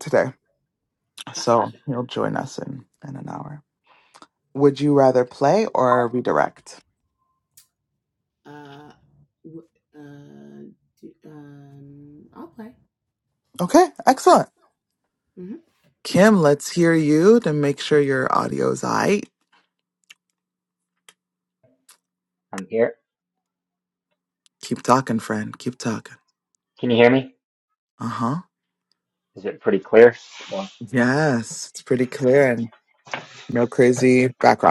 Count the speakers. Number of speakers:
3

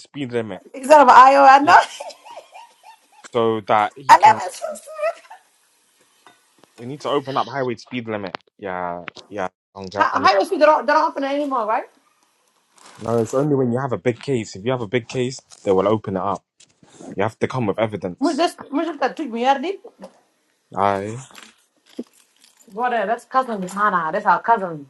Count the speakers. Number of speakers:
2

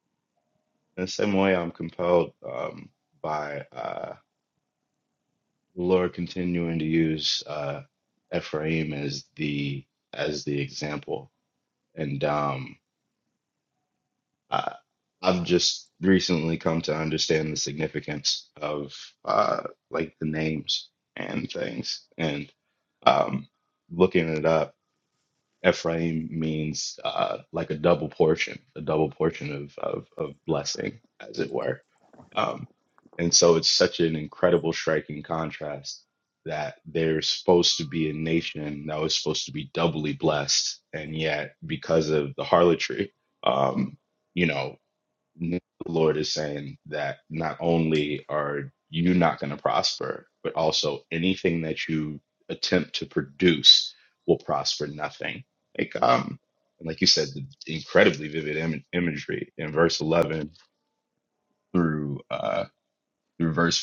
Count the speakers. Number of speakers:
1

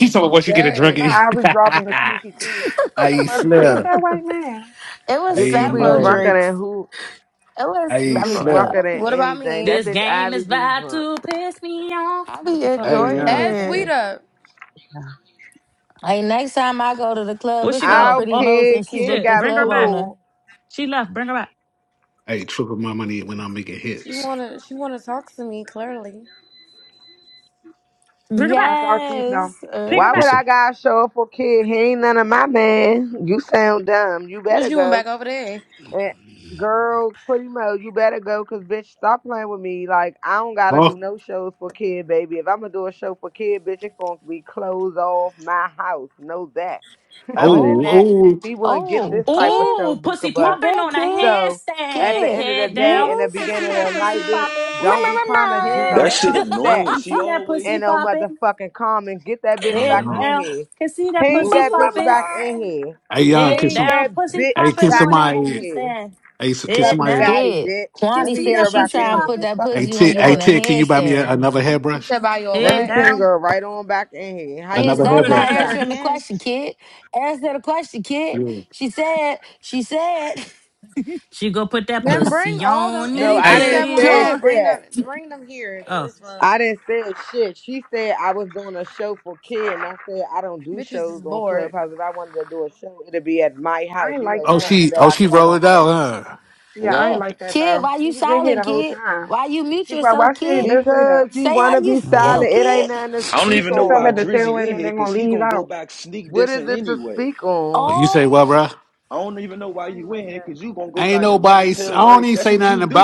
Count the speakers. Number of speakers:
7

